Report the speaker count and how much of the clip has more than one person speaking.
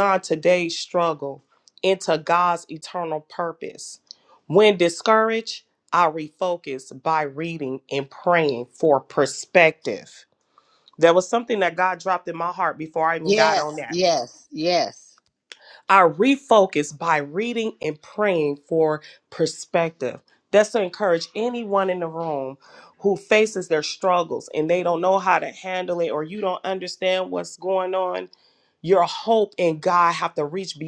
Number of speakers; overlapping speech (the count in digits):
2, about 2%